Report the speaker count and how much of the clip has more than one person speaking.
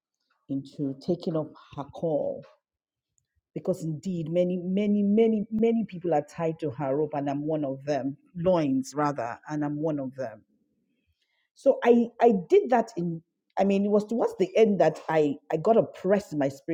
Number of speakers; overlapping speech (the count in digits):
1, no overlap